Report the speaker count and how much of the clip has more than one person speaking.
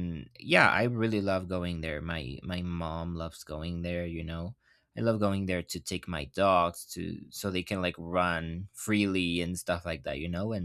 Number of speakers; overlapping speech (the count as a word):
one, no overlap